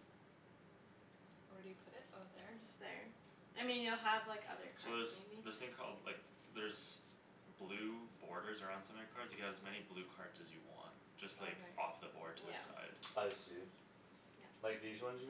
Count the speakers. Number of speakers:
4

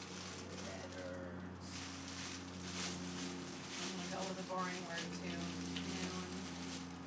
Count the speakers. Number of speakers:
2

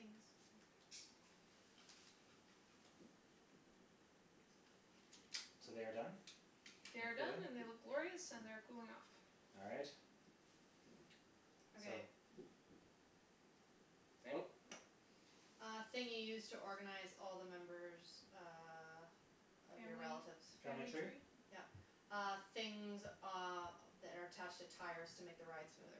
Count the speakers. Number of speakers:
3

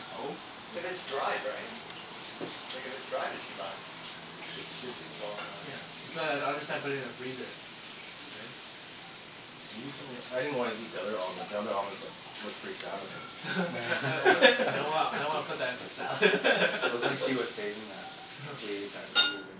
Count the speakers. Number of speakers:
4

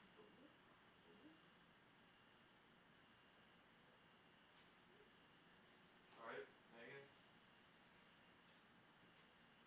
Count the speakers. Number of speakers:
1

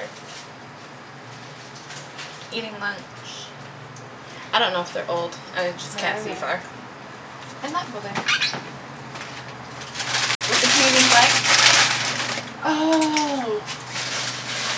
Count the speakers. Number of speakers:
2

